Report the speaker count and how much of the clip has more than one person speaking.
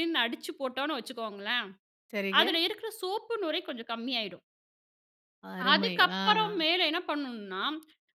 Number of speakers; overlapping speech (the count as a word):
two, about 10%